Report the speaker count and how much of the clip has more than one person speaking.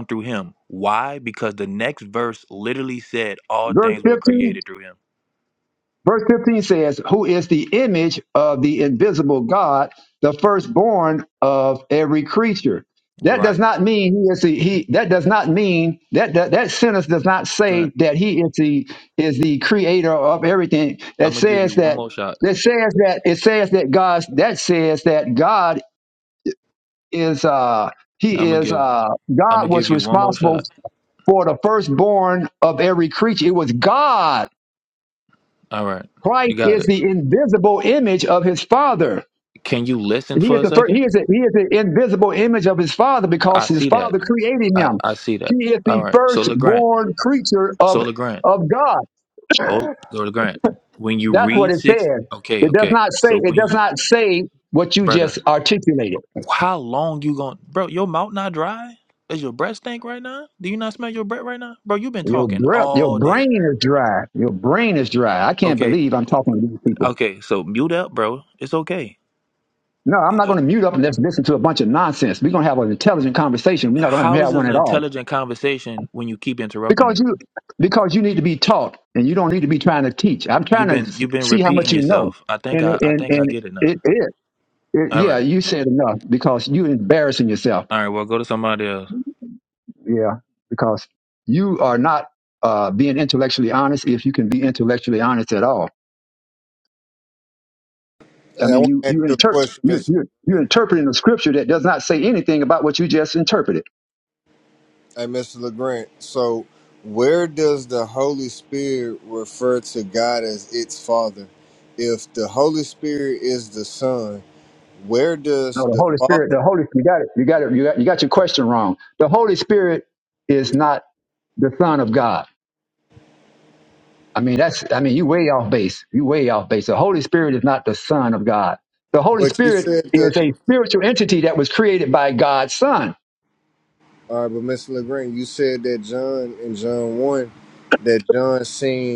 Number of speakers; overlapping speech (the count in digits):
3, about 14%